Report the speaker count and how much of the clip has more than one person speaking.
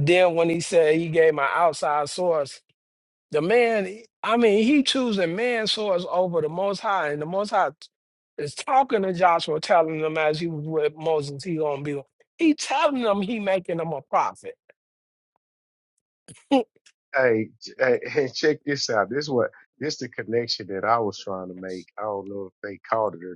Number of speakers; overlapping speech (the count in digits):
2, no overlap